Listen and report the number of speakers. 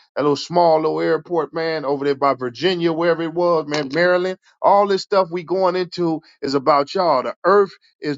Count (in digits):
1